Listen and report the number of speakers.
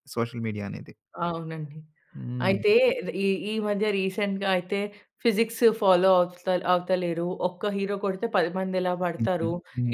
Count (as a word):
two